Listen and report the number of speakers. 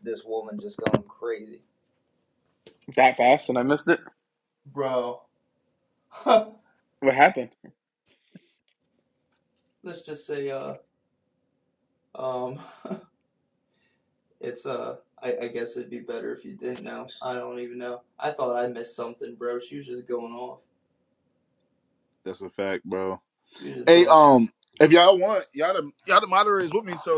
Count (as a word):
three